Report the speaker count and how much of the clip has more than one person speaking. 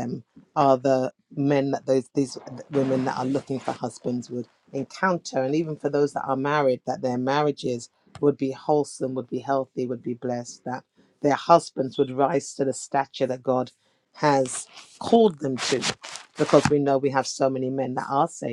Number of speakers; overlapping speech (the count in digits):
1, no overlap